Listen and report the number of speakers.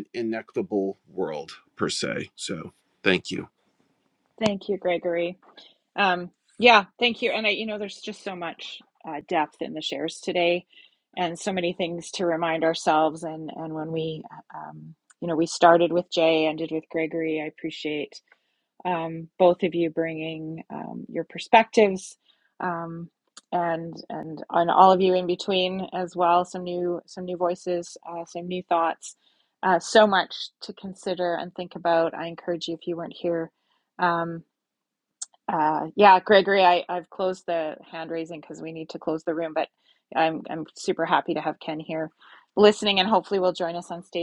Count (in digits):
2